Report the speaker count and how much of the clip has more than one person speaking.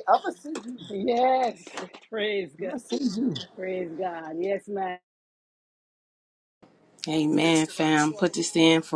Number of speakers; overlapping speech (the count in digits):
3, about 2%